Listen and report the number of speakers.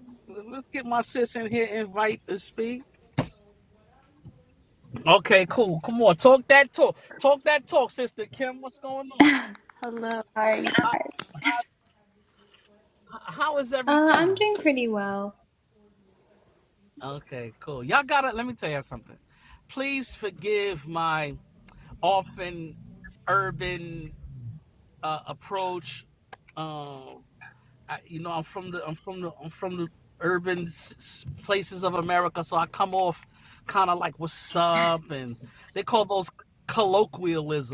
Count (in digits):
2